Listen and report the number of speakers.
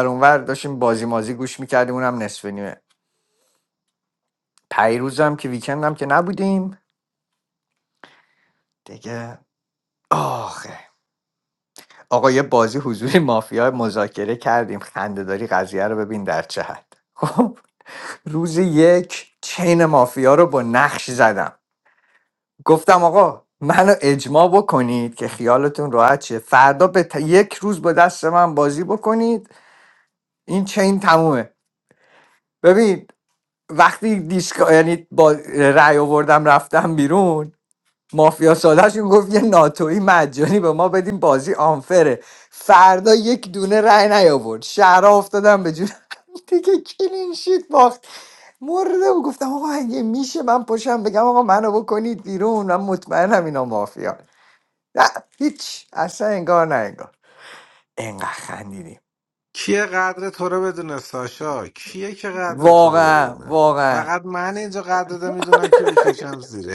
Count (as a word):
two